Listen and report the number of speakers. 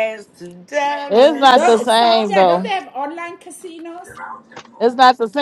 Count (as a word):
three